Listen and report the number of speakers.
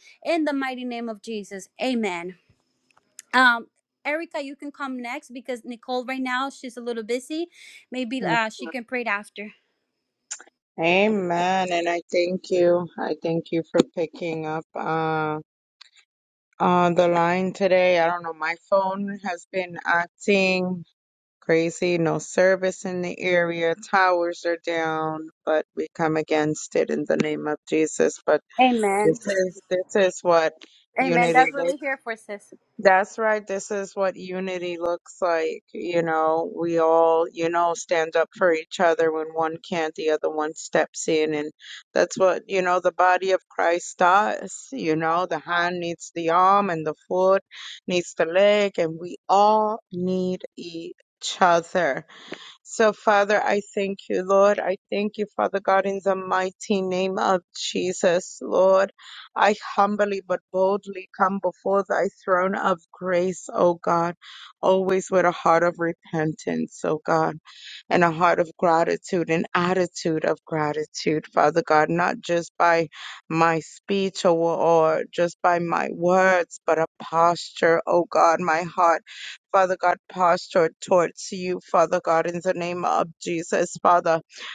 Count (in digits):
2